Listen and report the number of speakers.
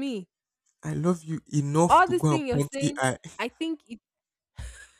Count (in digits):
2